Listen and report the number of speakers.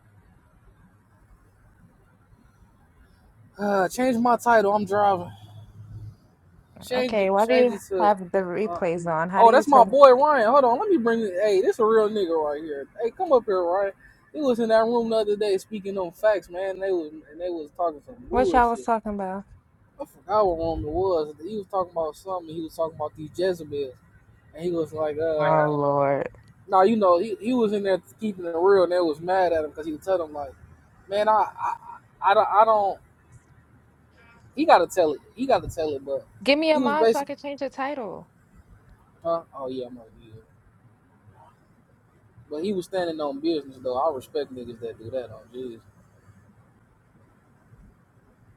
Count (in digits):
2